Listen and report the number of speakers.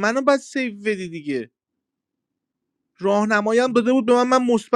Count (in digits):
1